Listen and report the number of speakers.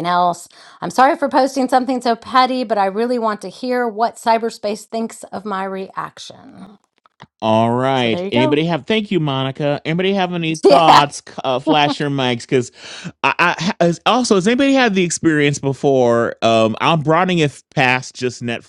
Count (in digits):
2